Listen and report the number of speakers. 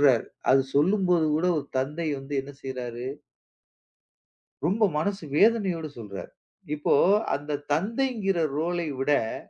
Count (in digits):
1